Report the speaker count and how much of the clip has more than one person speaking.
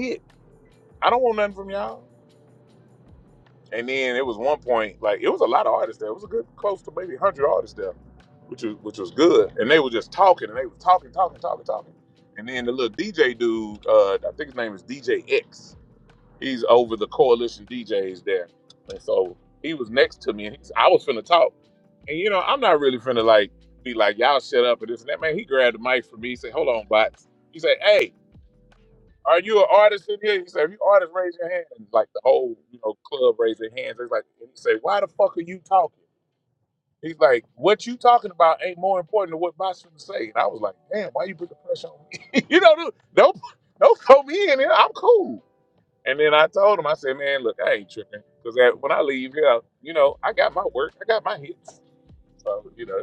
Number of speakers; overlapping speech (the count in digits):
1, no overlap